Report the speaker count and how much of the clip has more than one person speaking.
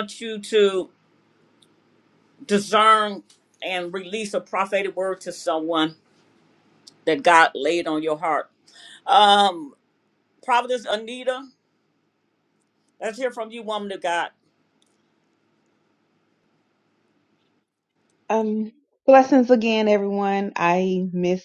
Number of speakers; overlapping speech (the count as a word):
two, no overlap